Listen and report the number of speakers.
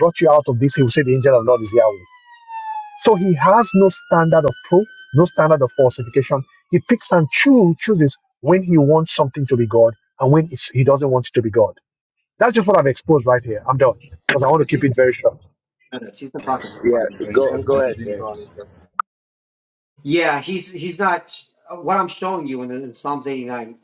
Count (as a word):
three